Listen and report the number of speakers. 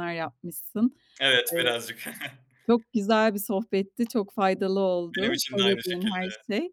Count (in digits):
2